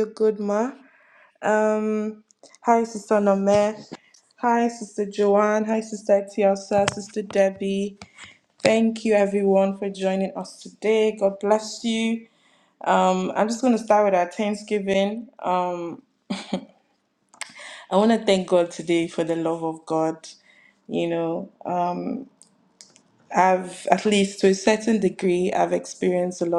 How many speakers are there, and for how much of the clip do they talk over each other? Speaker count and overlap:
1, no overlap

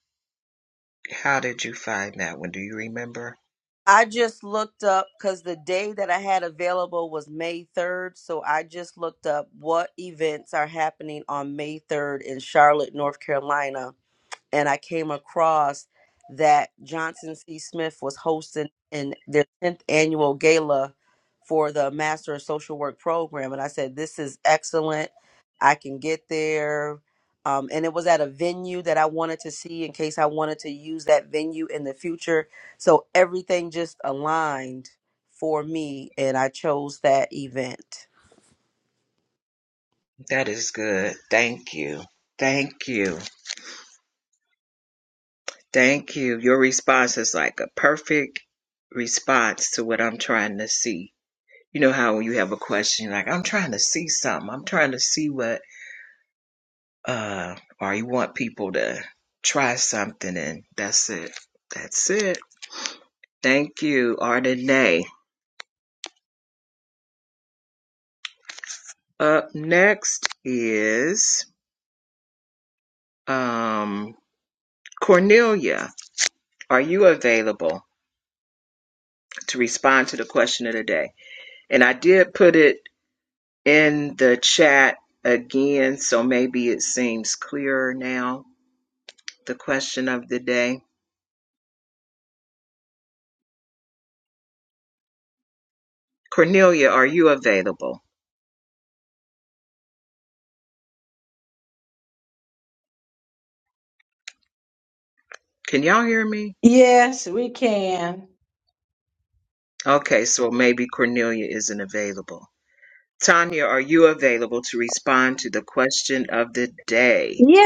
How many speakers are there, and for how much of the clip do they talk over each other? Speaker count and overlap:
3, under 1%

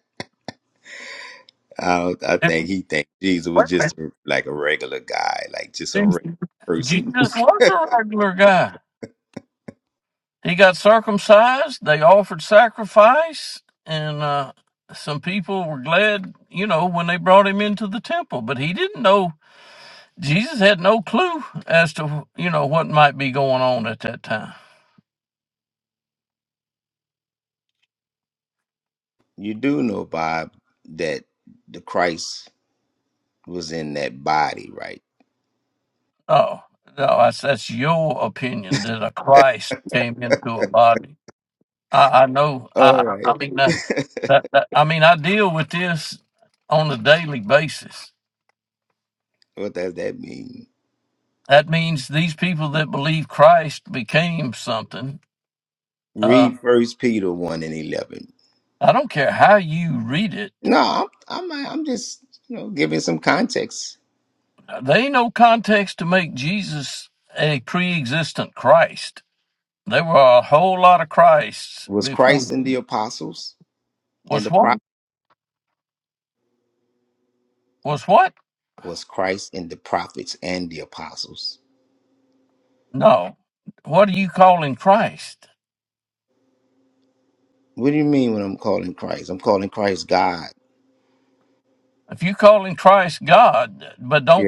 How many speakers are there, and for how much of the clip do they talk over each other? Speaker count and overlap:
2, about 3%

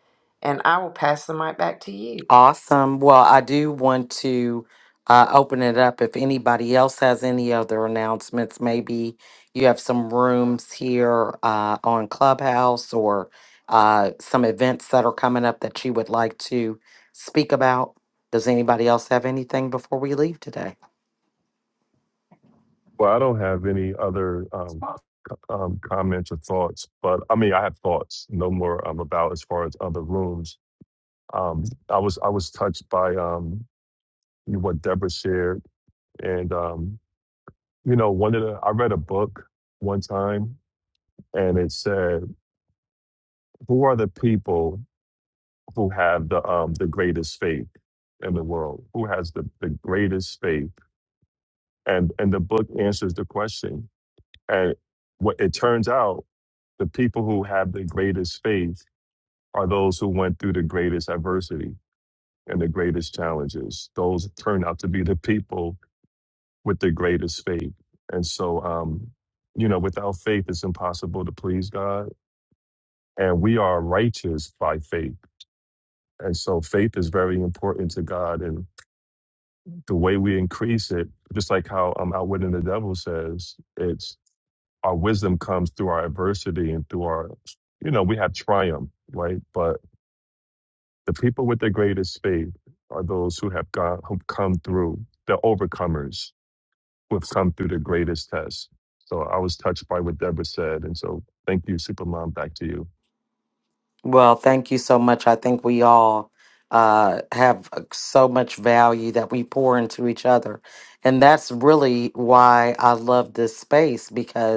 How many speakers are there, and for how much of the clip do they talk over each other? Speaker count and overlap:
3, no overlap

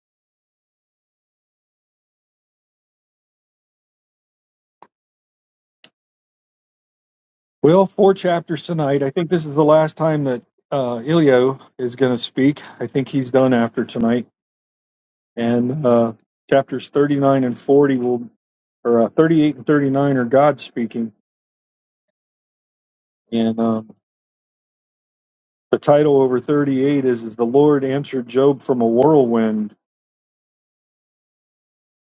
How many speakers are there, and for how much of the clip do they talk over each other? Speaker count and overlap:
1, no overlap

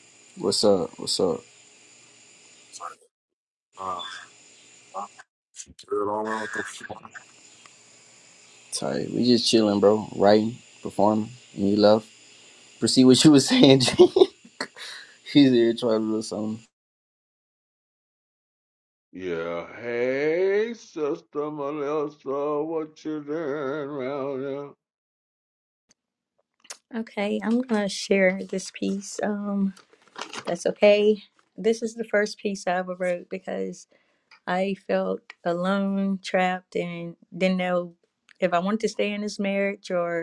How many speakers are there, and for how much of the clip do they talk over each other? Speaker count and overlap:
4, no overlap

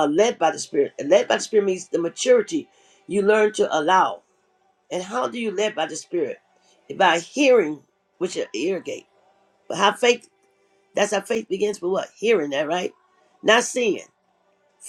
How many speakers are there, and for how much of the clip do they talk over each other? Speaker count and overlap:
1, no overlap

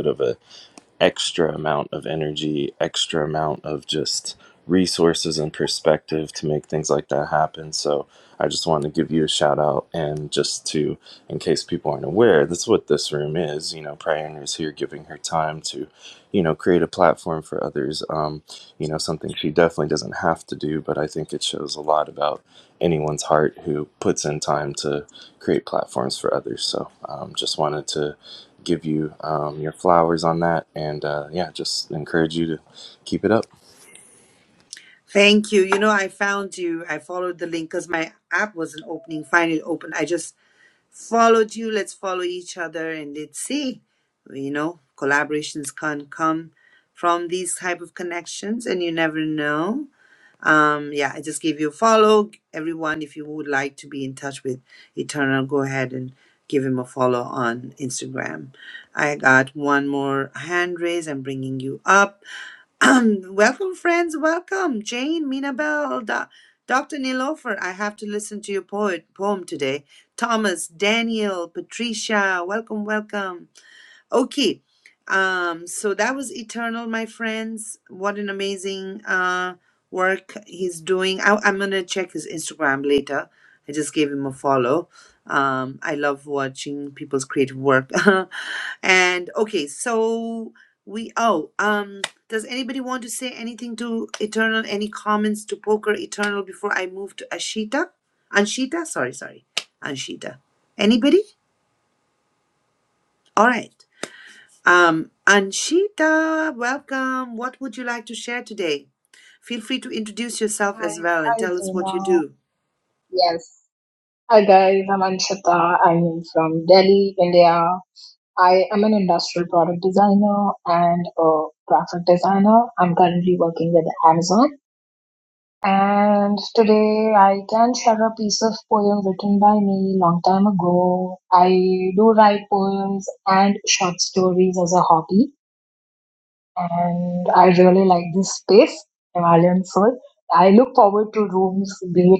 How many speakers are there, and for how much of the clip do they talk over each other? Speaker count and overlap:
3, about 1%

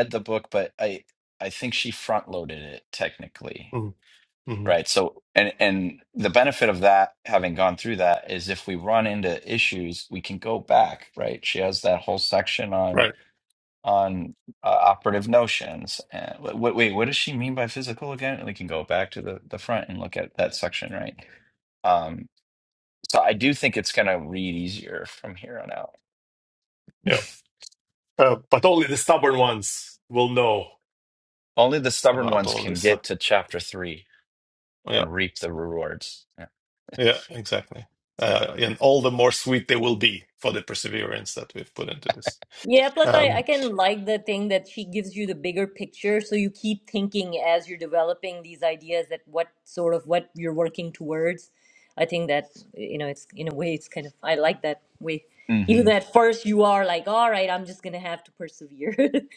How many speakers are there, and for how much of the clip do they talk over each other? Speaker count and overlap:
3, about 3%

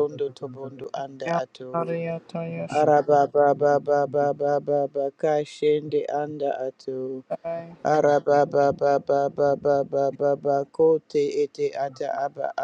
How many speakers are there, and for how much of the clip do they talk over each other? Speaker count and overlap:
2, about 1%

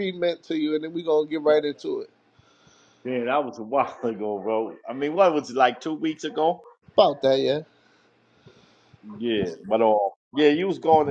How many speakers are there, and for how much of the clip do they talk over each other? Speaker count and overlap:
2, no overlap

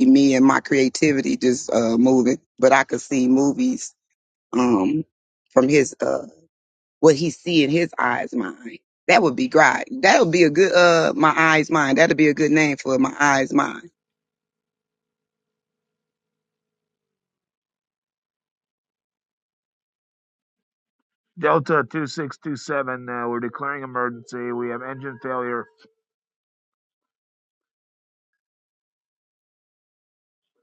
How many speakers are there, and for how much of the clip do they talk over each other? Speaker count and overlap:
2, no overlap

